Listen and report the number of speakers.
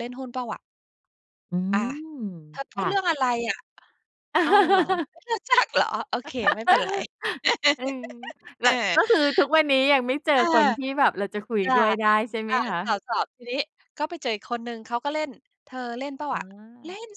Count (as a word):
two